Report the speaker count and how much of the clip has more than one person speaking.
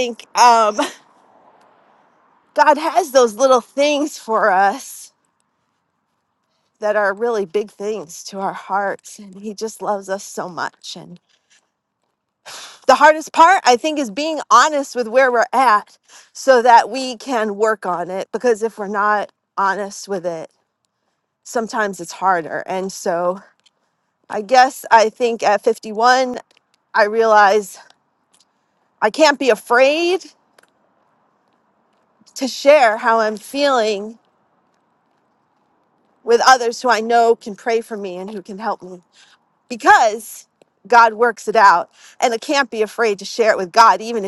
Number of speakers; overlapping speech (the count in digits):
1, no overlap